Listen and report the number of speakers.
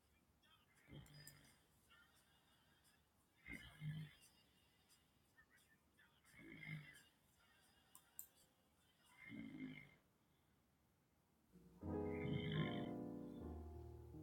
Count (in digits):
0